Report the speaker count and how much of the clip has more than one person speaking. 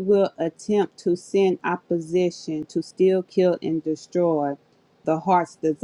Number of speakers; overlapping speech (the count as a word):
one, no overlap